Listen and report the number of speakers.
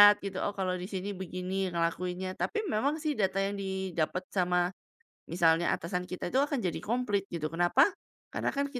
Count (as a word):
one